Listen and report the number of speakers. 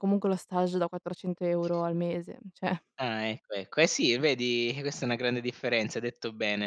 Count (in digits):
2